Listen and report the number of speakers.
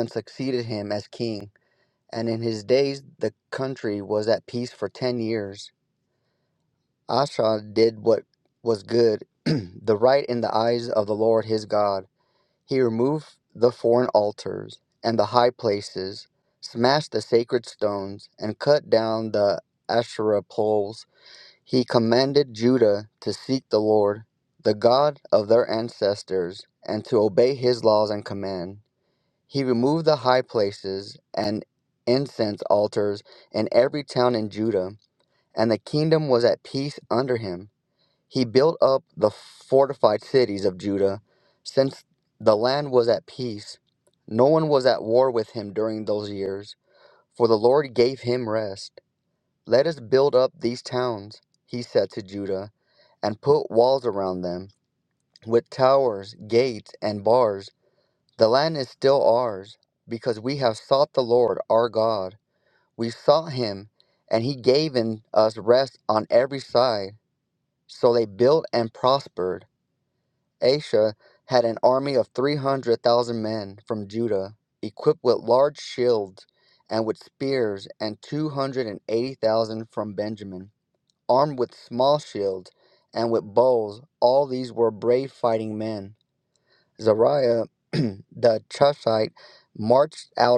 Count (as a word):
one